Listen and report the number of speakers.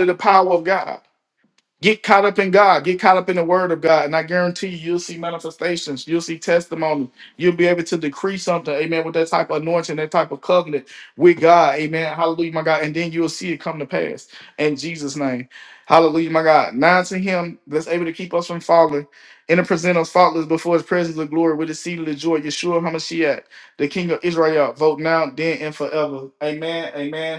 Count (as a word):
one